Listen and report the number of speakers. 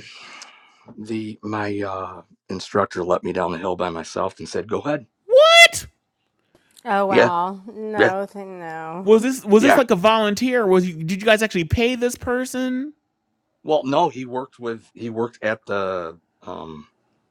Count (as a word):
three